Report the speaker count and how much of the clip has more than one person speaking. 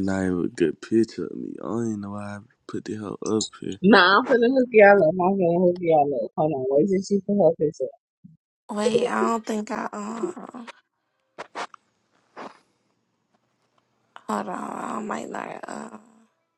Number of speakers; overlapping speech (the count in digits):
3, no overlap